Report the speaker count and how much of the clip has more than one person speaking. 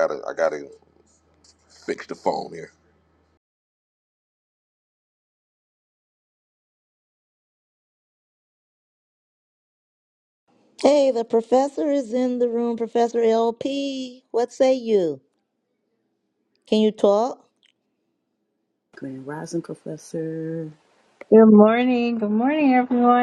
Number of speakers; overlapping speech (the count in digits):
4, no overlap